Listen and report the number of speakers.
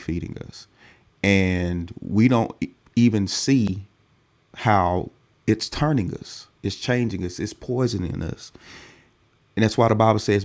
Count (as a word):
one